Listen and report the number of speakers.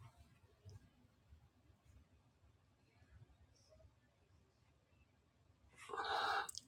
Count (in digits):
0